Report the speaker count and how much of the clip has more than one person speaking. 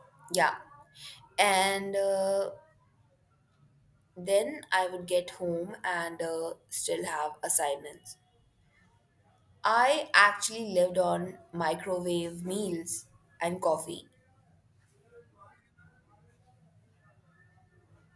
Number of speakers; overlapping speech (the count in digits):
1, no overlap